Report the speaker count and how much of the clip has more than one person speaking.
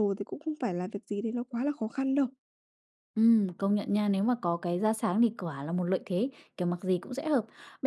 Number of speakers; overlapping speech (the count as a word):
two, no overlap